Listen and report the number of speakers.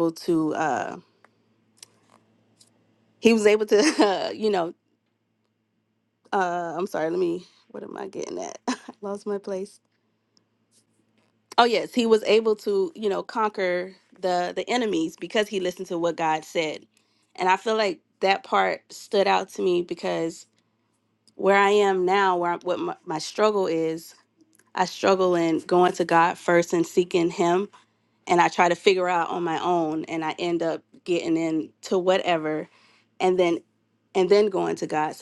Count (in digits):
1